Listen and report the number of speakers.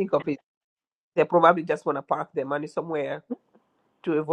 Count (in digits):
1